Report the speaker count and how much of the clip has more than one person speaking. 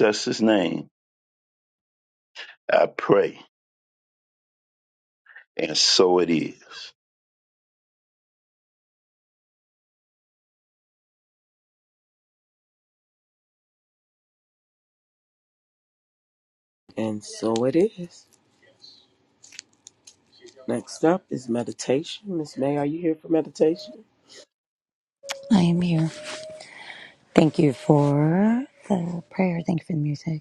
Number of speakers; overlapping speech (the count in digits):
3, no overlap